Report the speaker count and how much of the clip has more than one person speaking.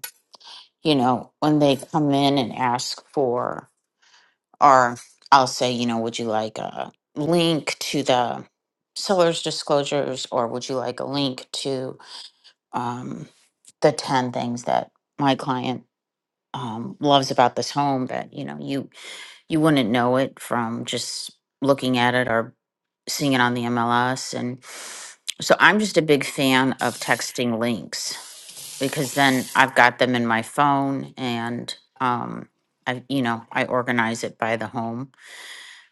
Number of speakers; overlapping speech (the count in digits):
1, no overlap